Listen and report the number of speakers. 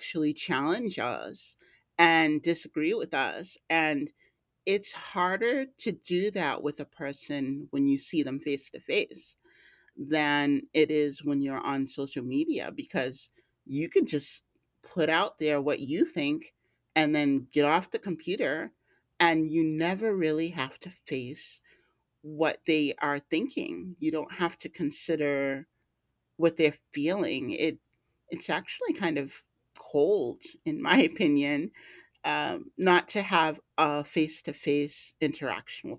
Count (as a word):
one